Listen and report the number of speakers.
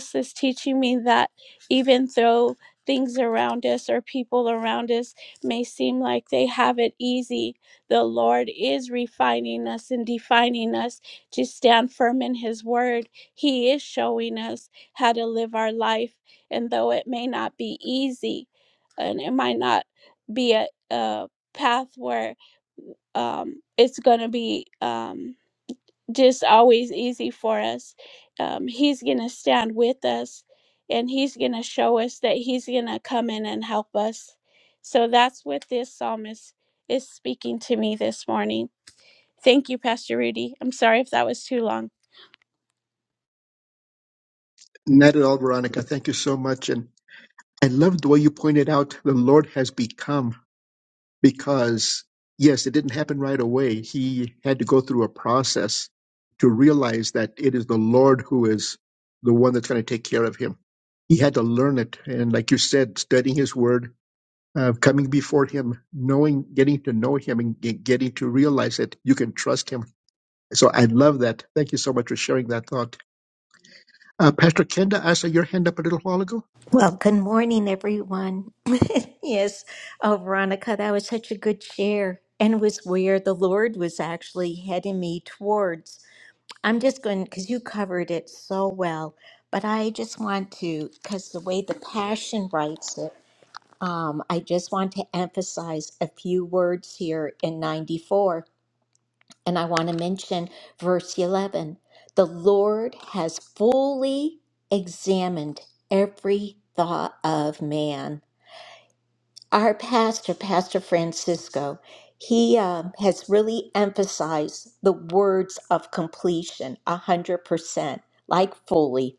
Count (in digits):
3